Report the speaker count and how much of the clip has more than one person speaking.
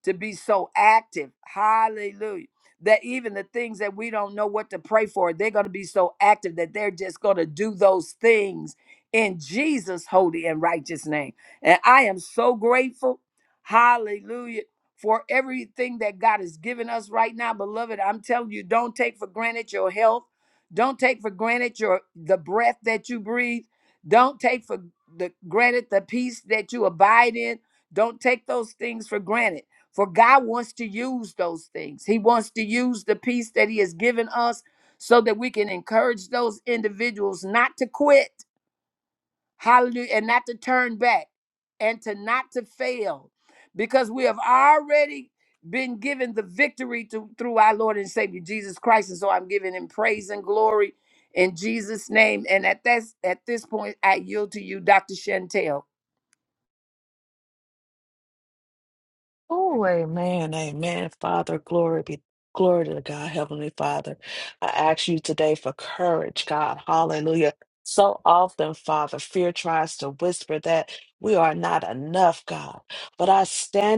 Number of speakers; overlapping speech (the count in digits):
2, no overlap